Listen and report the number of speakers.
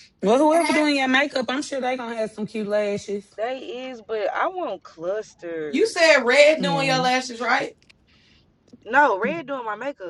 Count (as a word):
three